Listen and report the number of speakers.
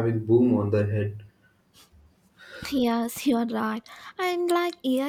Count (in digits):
2